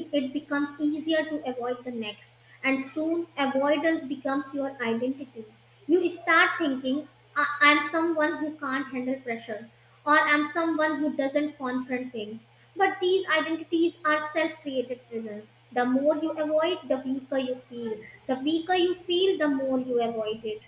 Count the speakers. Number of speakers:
1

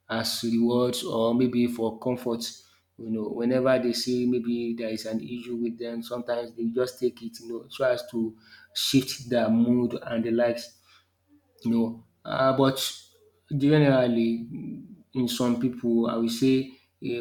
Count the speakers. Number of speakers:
1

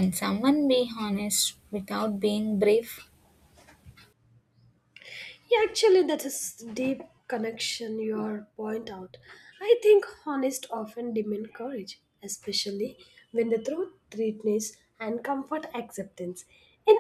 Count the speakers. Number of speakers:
2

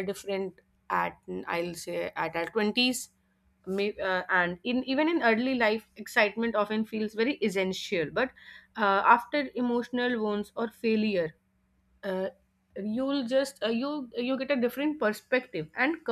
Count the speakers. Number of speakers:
1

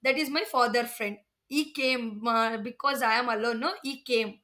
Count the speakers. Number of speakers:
1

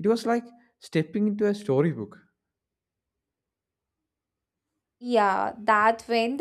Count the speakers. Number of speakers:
2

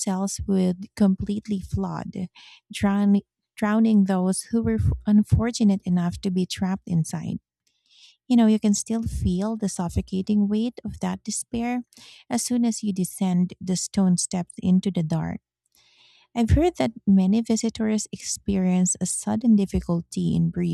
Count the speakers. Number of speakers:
1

